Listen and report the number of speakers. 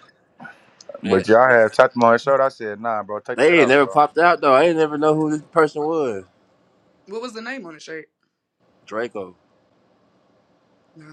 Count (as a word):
three